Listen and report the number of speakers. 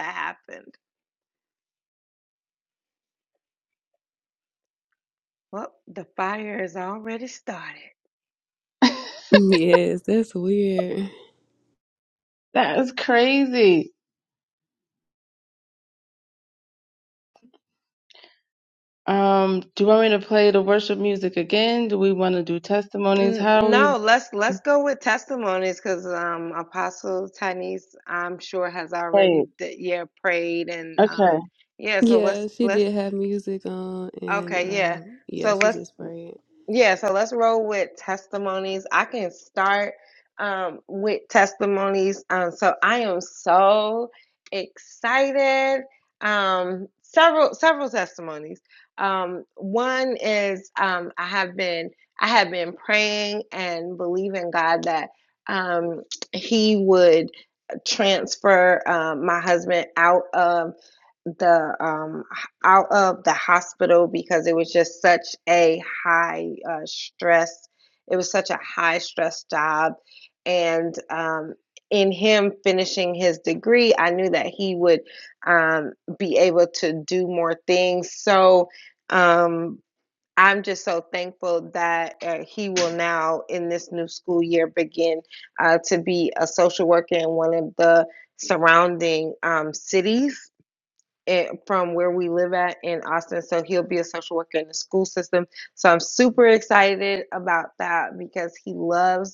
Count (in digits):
3